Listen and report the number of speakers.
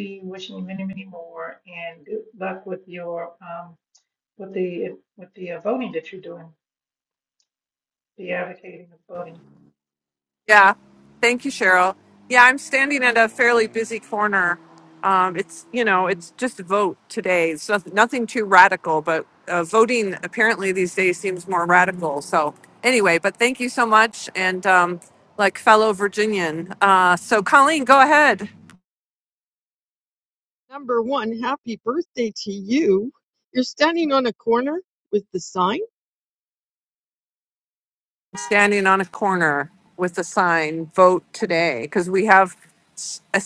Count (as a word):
three